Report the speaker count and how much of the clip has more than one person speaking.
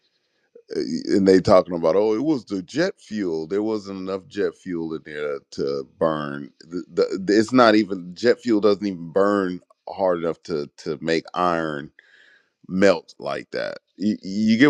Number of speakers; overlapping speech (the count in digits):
1, no overlap